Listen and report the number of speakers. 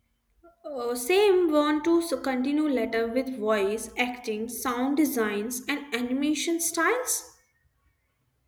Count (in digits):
1